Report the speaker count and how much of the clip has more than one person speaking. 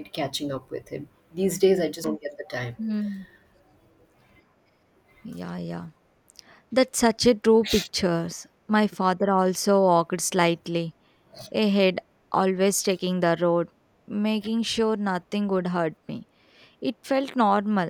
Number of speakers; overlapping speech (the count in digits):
2, no overlap